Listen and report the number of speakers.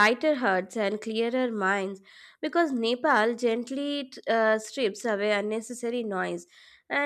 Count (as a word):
one